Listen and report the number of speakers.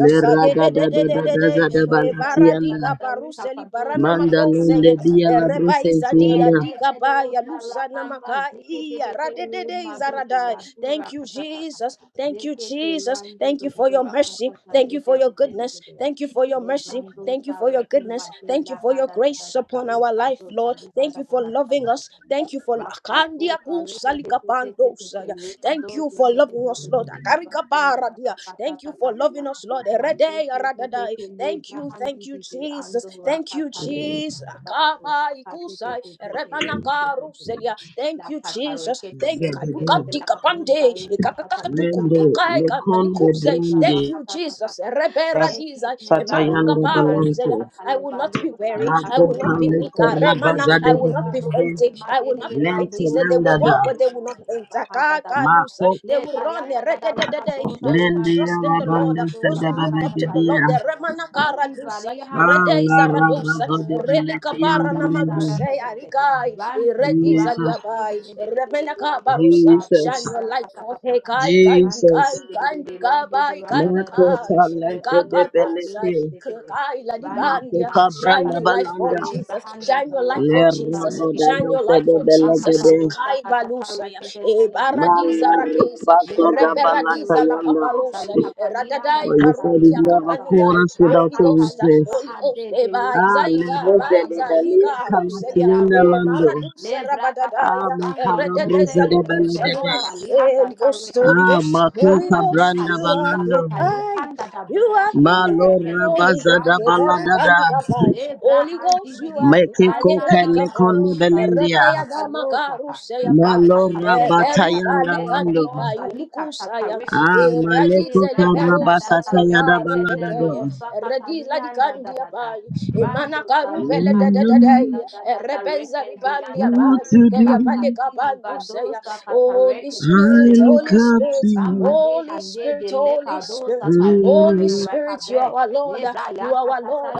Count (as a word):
three